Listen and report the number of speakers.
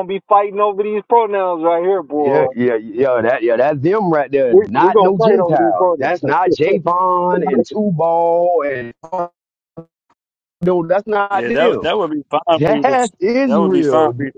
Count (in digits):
3